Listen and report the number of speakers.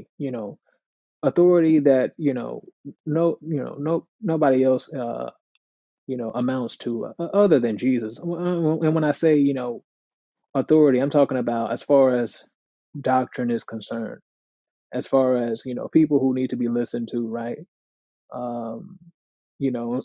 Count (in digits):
1